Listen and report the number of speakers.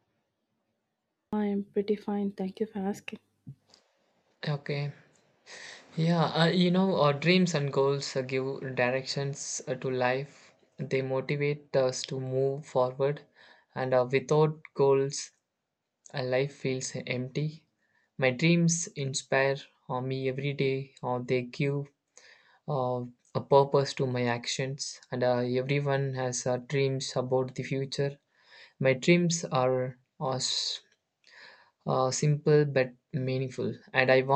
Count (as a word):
two